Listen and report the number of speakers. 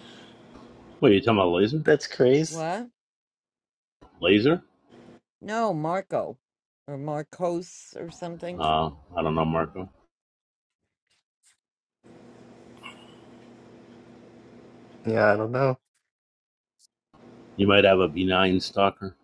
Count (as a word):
three